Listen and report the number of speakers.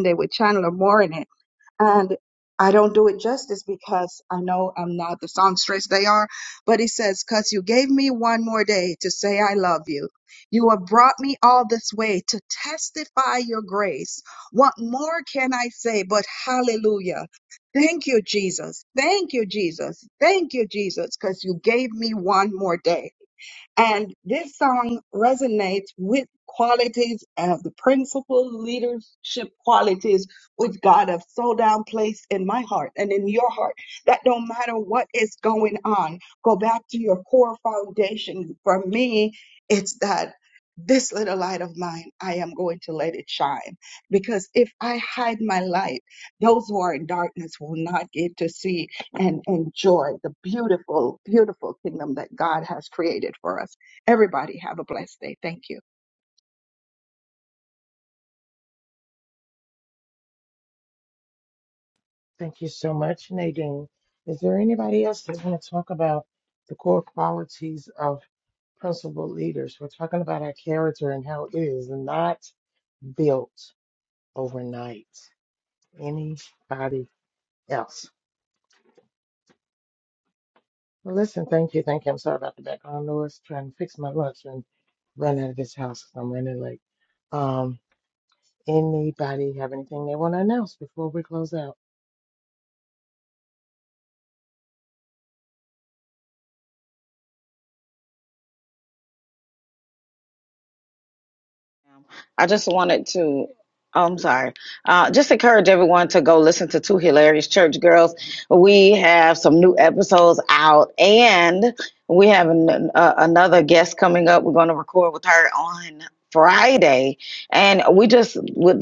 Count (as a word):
three